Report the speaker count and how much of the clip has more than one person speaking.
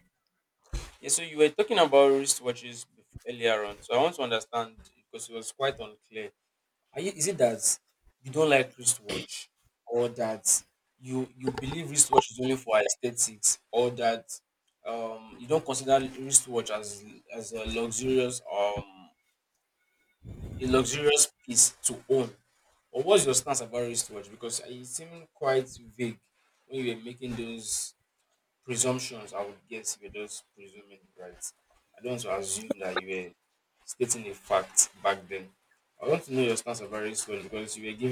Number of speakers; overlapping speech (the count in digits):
1, no overlap